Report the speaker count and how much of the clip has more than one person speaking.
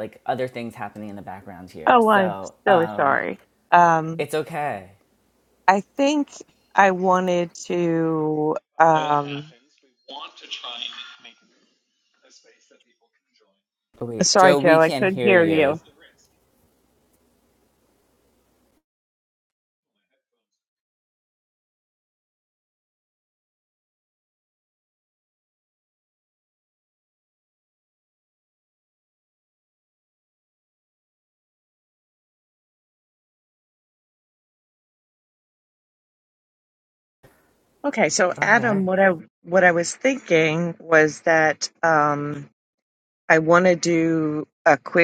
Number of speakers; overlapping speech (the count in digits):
3, about 8%